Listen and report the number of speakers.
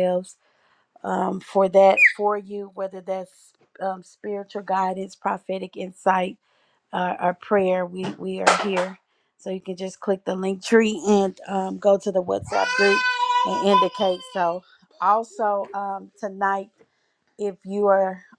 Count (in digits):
1